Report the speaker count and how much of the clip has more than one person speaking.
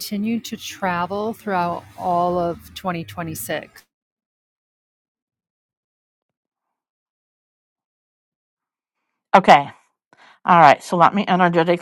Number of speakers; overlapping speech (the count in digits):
2, no overlap